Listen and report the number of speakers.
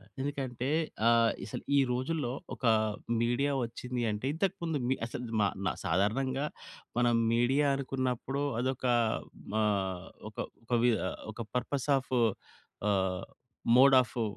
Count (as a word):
one